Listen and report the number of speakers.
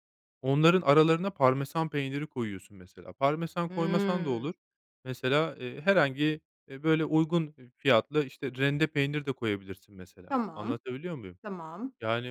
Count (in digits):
2